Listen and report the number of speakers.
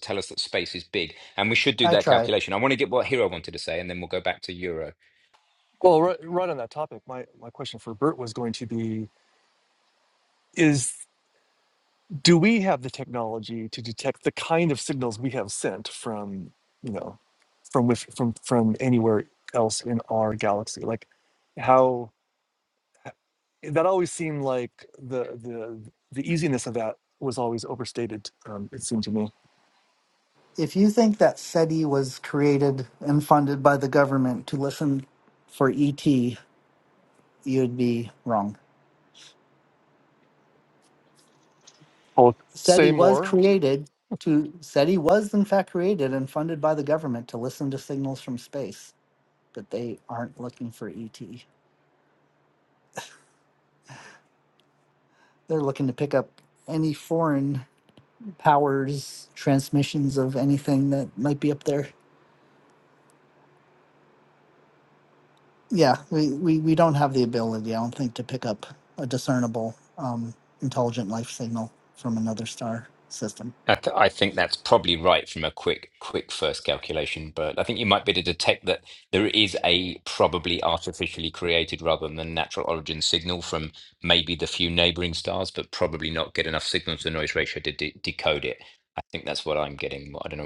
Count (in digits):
3